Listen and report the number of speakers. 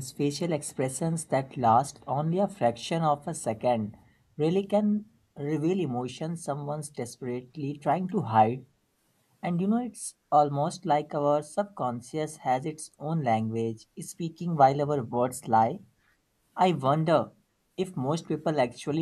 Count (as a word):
one